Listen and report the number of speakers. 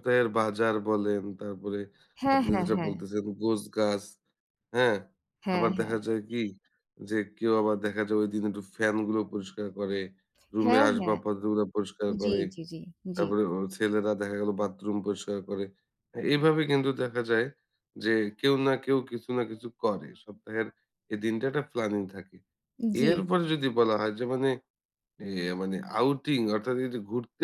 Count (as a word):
two